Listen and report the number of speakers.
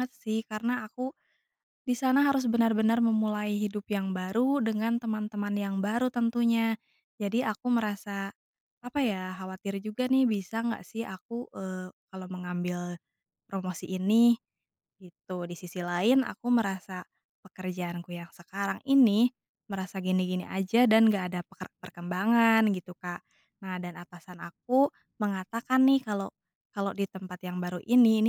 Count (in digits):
1